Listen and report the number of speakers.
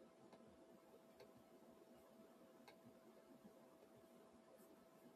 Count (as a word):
zero